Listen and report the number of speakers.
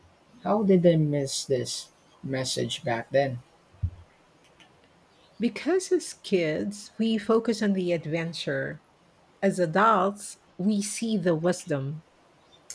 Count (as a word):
two